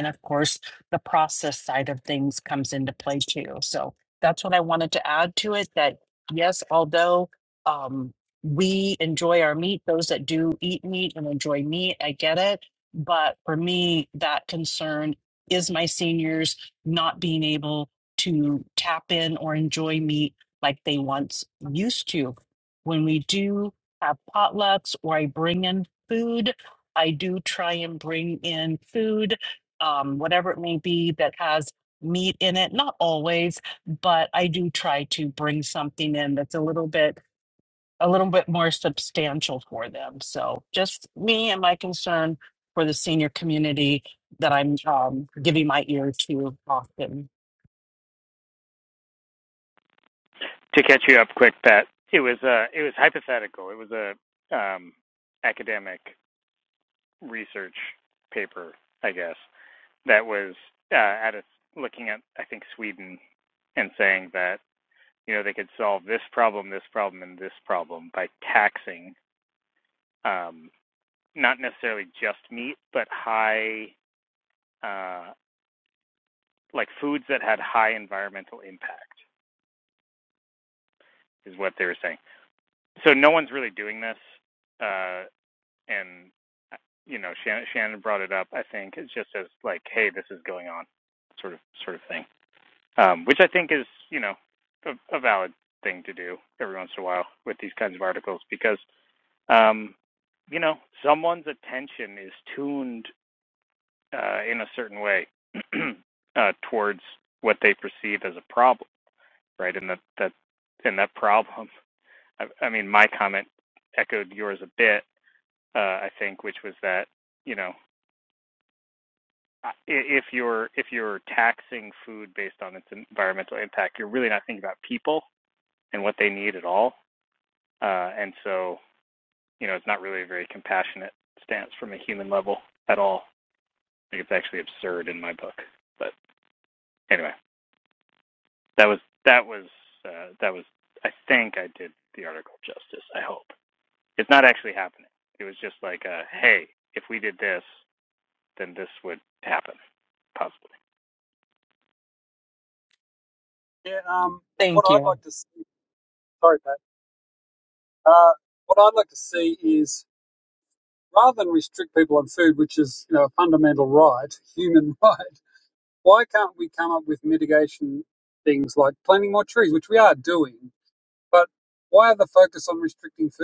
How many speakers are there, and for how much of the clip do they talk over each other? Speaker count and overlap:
3, under 1%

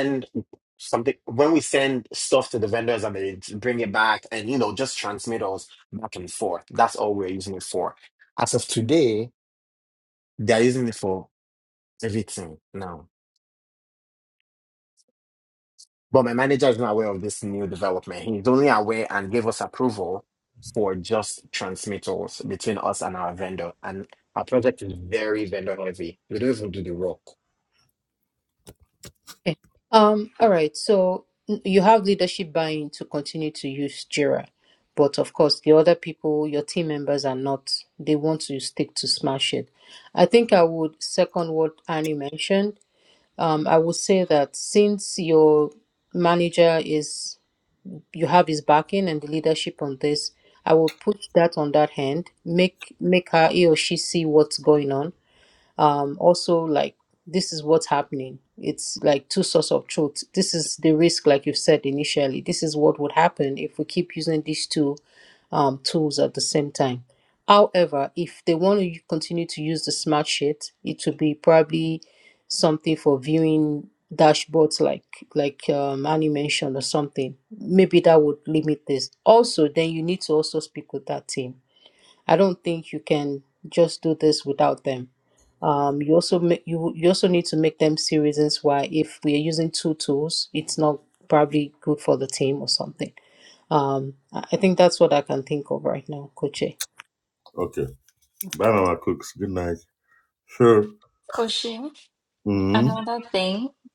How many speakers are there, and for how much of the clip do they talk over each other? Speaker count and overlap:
4, under 1%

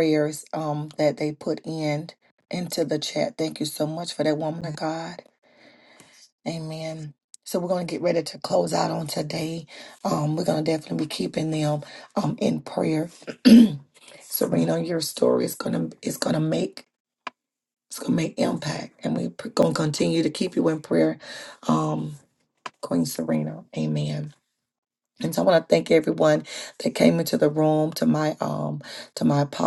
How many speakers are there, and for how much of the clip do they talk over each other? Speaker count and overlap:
1, no overlap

